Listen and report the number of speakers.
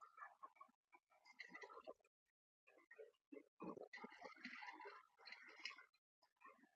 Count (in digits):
0